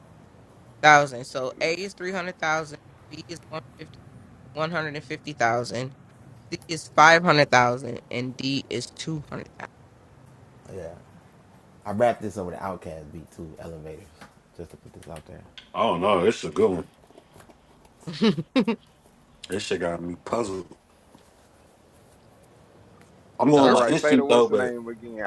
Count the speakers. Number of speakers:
4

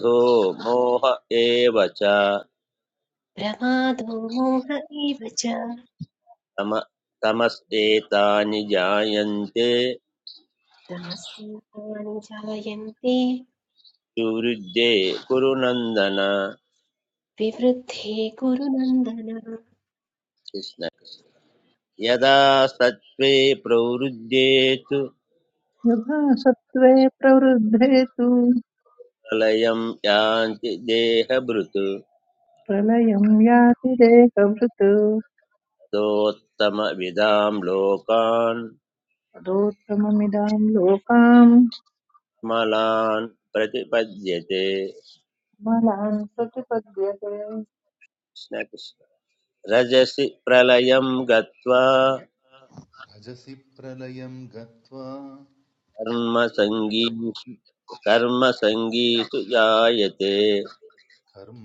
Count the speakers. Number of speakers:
4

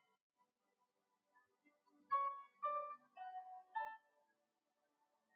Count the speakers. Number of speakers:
0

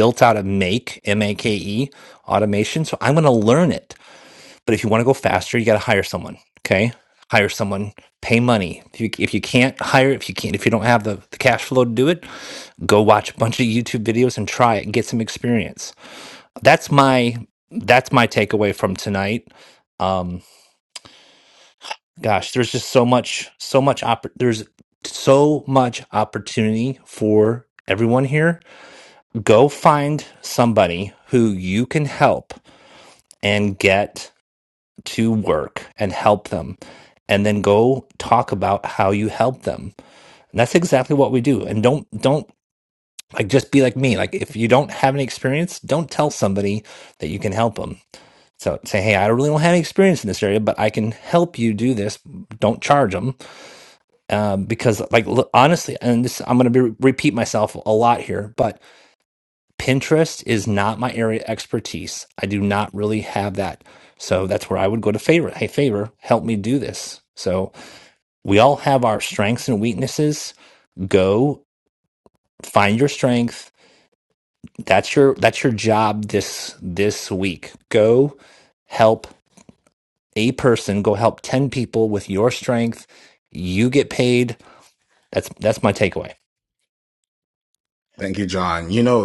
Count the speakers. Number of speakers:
2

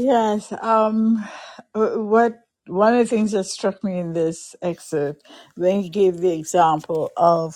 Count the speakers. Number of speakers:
1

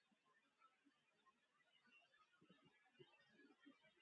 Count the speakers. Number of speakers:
0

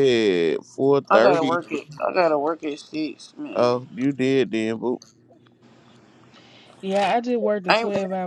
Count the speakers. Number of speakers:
3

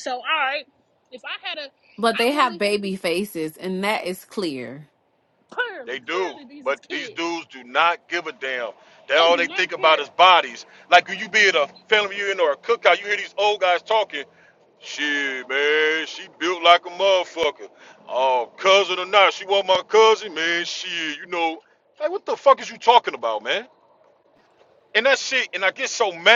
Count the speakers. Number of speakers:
3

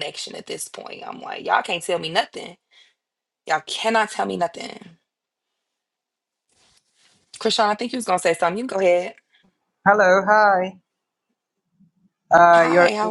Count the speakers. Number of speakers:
2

